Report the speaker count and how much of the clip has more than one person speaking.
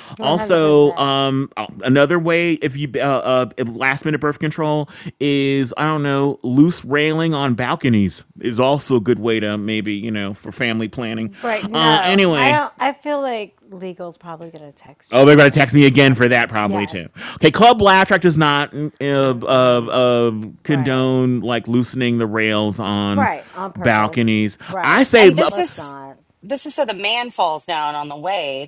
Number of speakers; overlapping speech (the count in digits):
3, about 19%